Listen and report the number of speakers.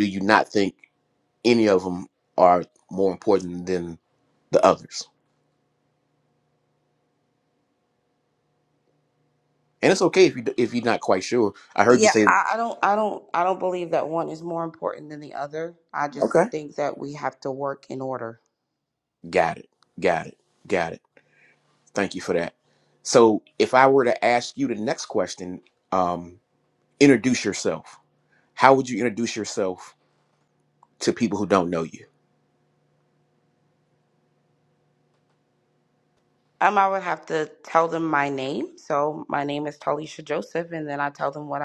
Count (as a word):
two